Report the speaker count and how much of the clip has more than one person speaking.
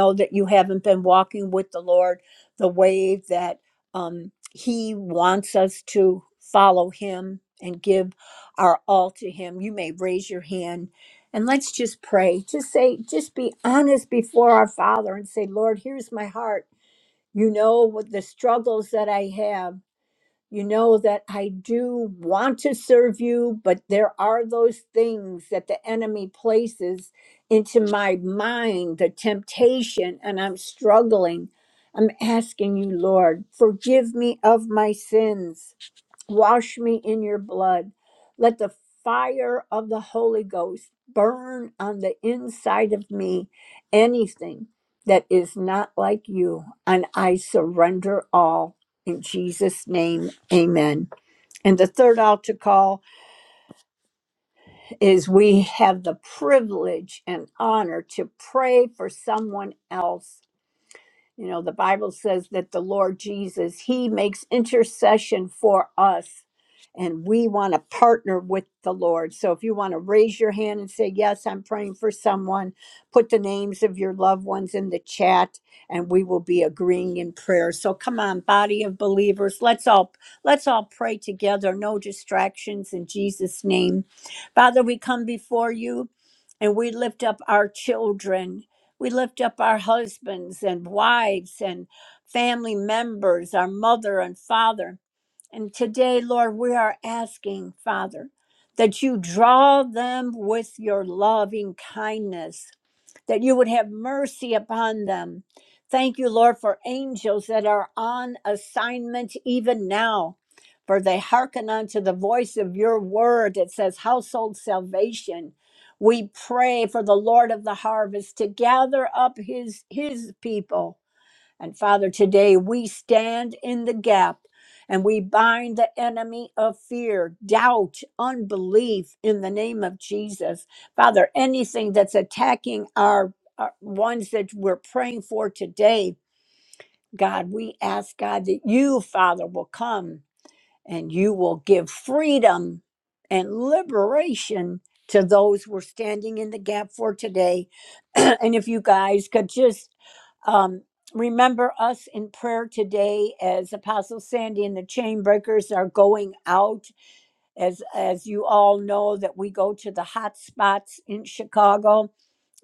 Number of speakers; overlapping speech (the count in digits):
1, no overlap